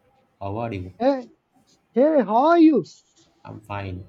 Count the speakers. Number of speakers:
2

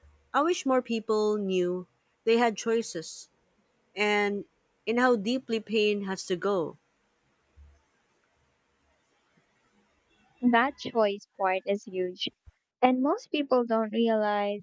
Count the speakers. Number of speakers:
2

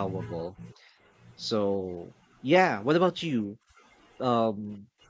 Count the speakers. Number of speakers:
1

